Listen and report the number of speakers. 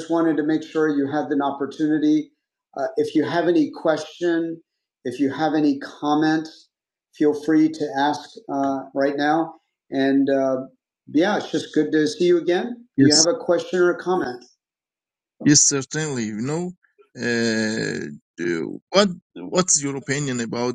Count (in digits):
2